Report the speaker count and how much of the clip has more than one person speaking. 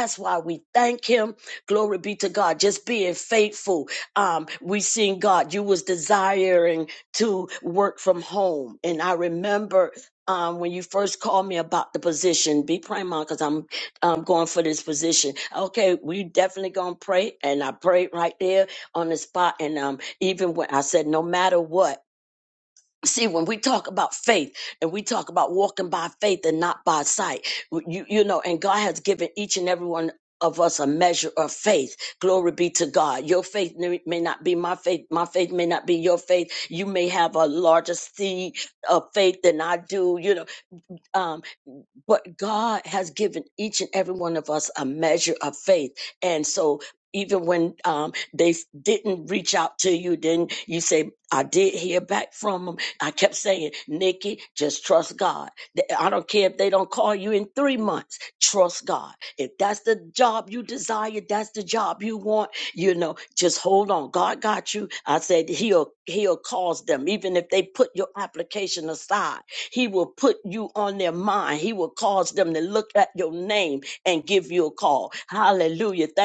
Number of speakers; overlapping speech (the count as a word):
one, no overlap